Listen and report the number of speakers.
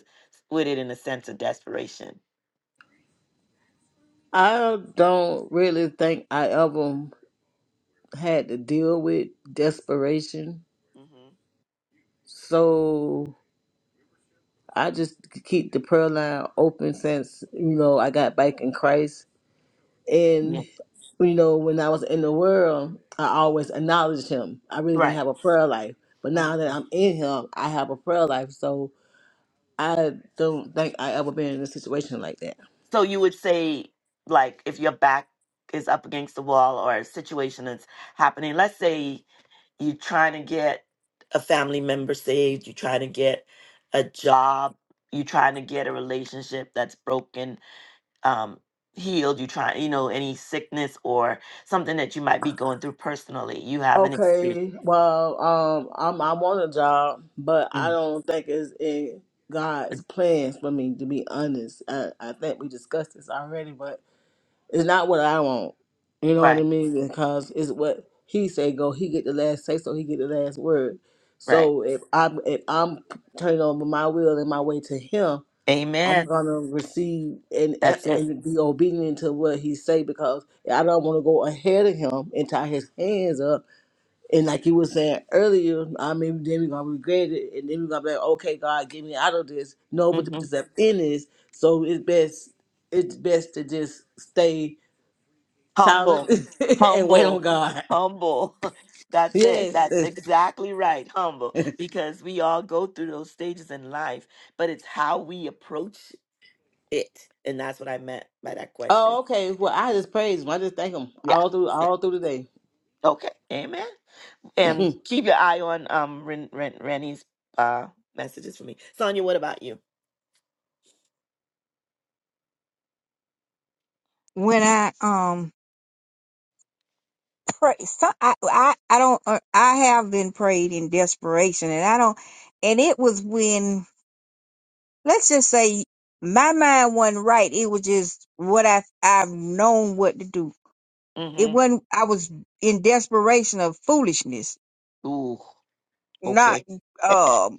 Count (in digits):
3